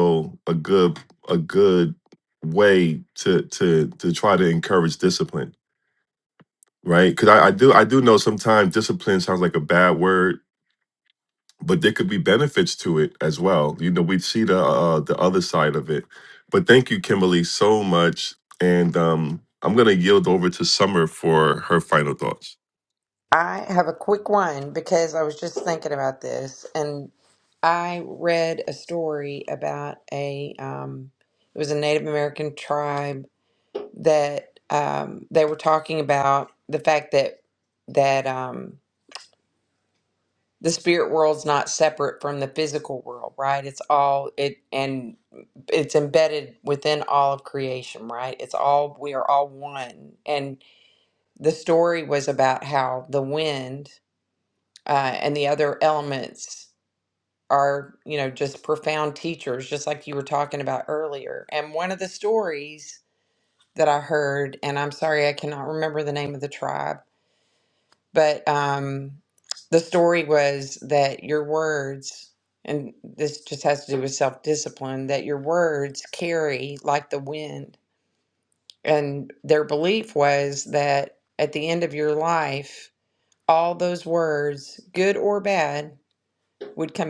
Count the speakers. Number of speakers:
2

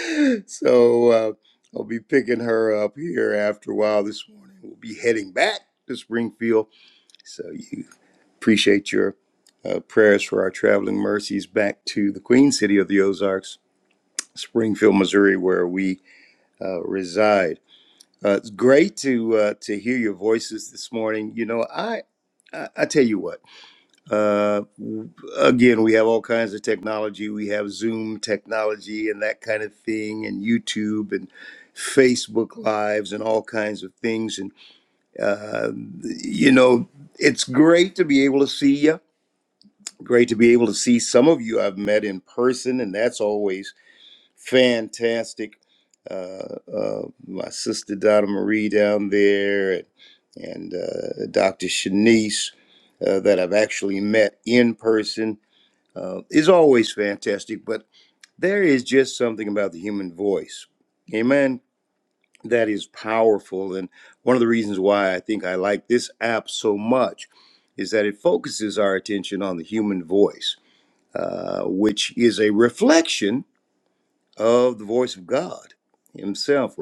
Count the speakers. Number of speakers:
1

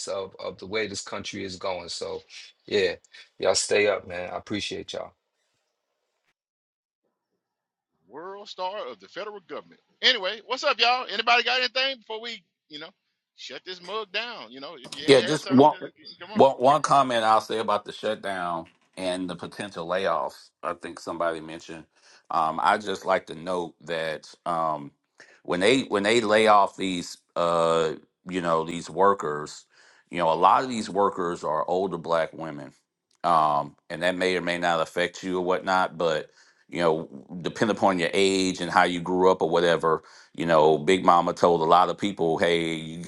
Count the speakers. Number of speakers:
3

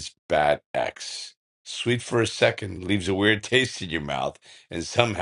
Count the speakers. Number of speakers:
1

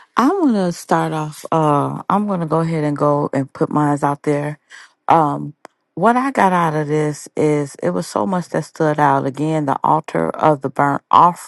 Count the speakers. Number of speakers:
1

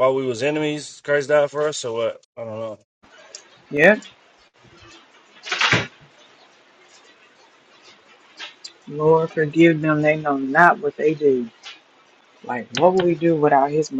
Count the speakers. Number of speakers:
2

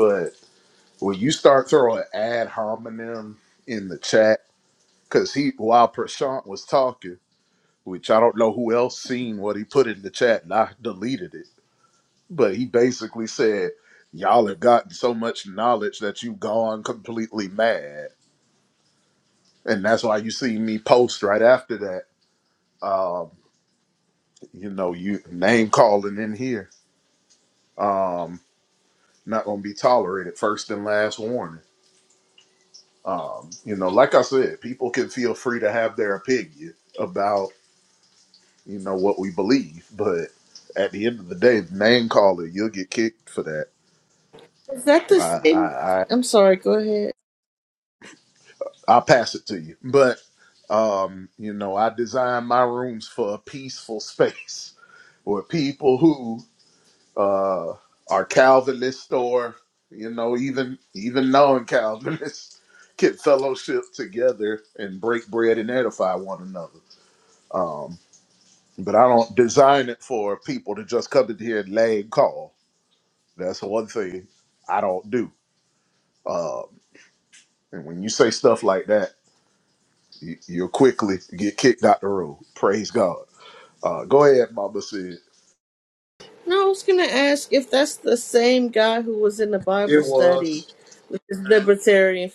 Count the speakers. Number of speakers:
2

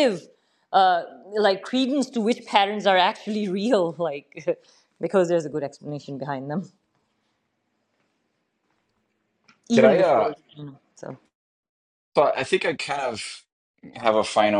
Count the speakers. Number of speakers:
2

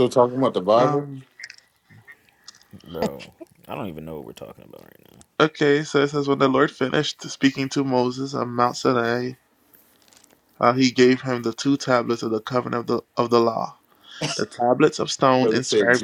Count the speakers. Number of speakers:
3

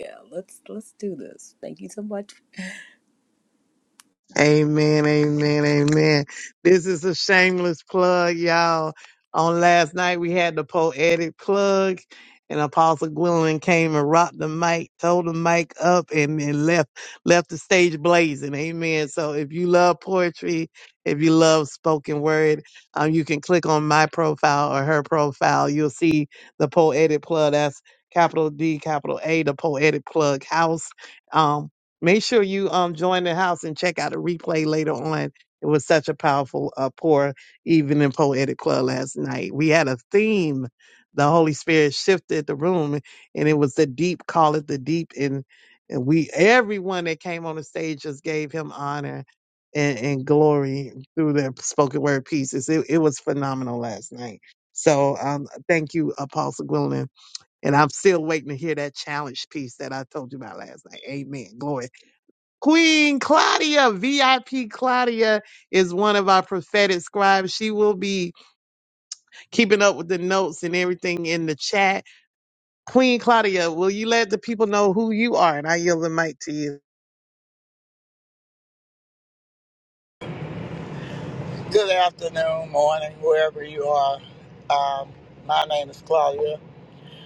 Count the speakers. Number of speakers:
3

